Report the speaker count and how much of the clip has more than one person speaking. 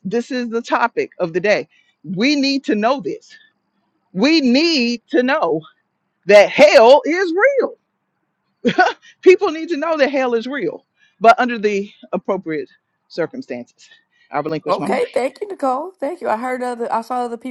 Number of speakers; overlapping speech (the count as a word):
two, about 2%